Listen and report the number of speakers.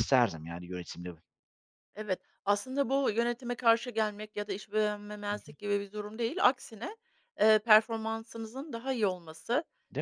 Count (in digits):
2